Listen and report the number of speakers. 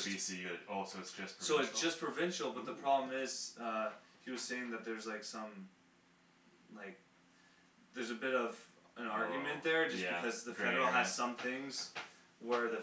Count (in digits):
2